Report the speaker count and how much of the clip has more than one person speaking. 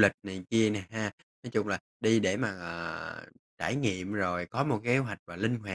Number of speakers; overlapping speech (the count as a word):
one, no overlap